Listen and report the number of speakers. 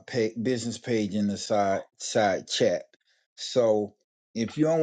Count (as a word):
one